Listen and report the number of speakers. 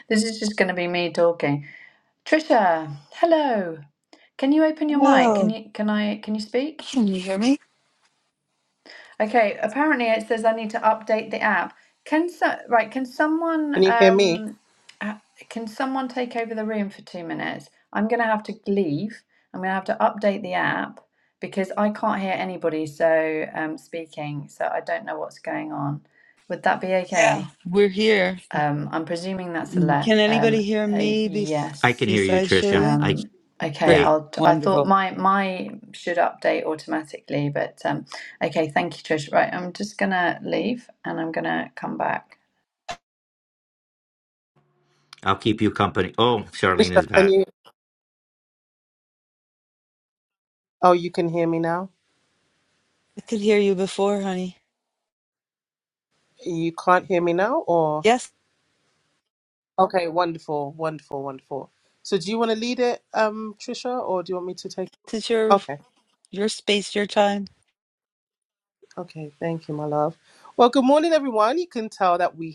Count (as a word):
four